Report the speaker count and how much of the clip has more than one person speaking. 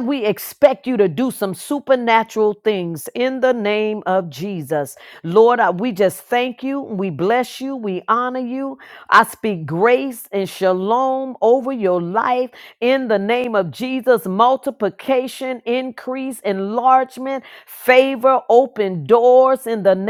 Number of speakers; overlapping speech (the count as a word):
one, no overlap